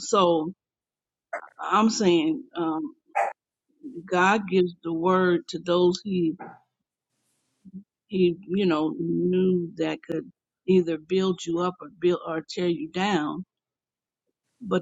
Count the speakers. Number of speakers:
1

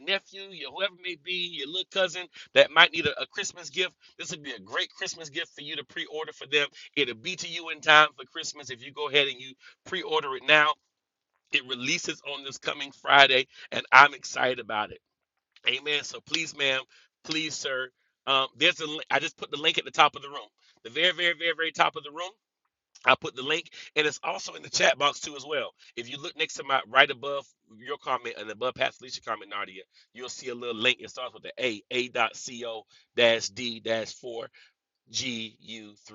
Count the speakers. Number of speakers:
1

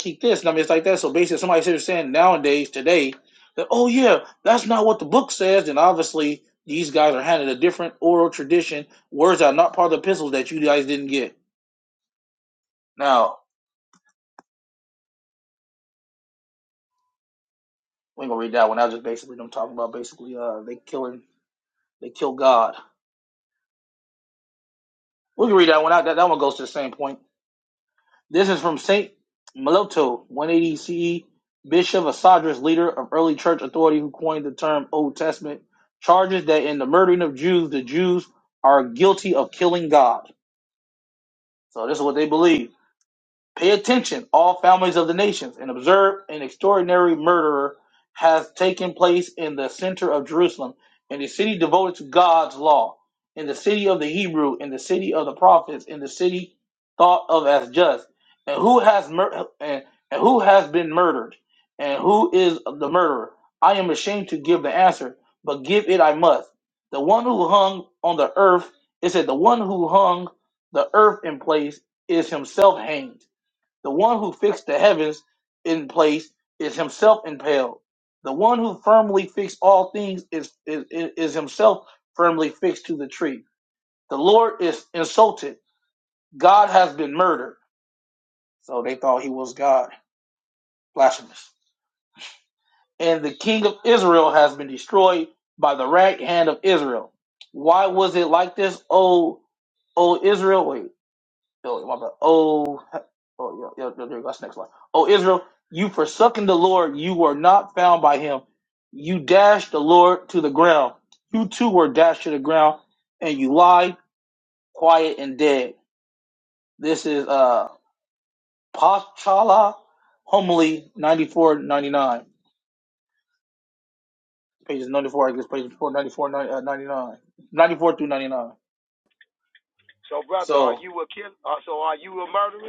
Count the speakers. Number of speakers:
2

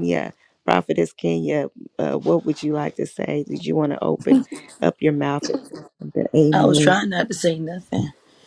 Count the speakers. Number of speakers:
2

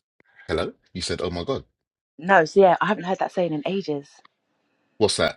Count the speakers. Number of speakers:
2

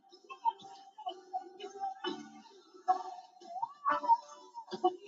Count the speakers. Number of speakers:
0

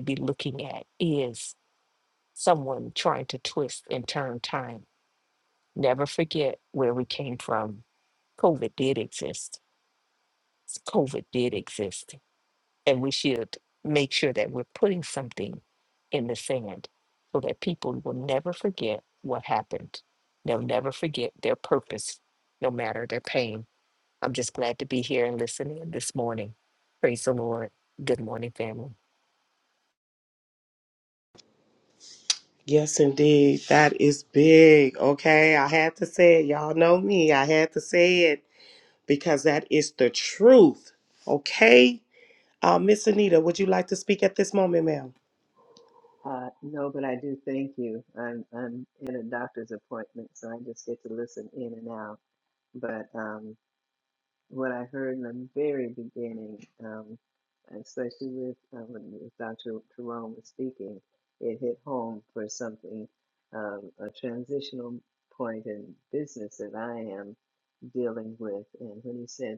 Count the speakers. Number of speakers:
3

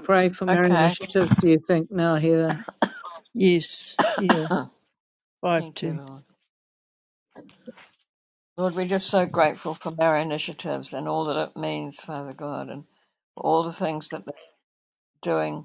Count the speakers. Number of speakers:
3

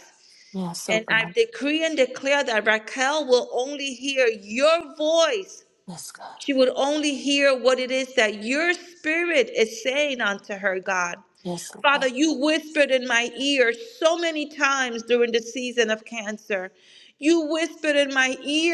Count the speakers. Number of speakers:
2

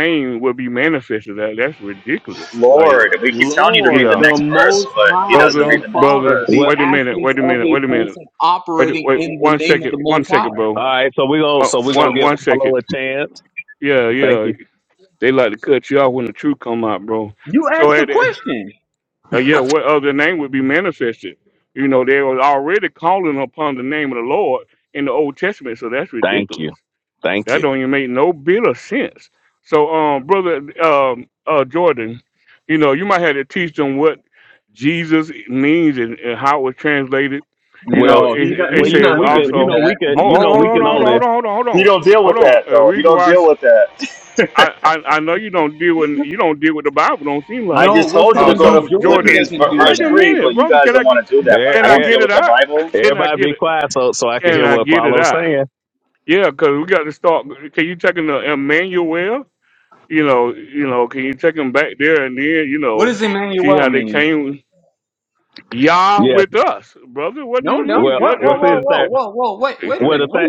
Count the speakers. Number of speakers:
4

